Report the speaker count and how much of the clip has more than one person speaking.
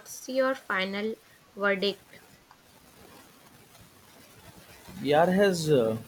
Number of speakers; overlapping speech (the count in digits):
2, no overlap